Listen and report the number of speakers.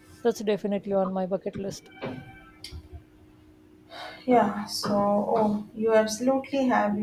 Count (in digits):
2